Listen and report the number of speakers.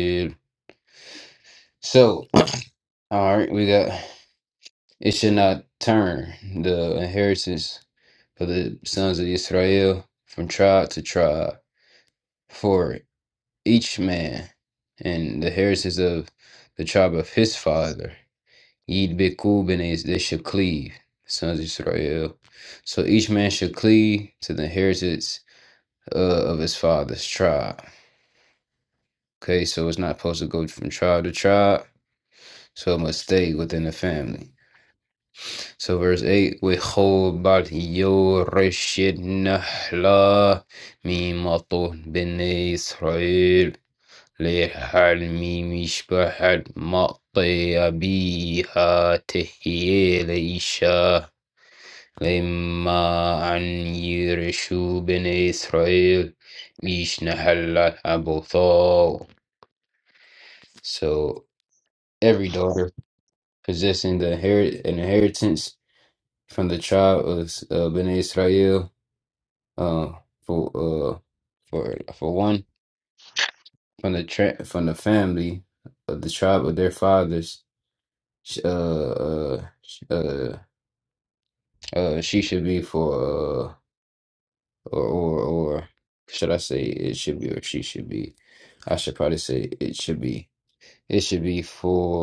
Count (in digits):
1